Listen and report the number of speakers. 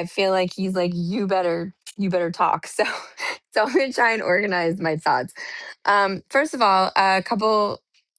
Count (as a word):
one